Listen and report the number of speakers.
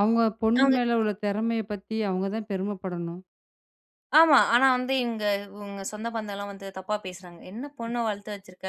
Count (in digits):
2